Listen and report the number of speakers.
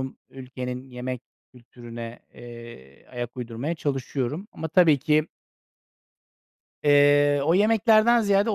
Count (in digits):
1